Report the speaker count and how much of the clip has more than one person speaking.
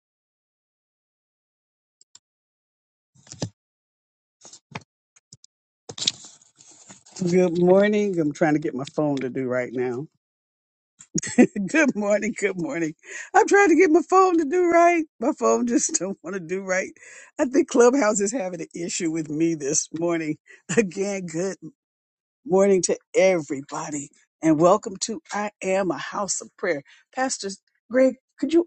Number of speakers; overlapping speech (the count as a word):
one, no overlap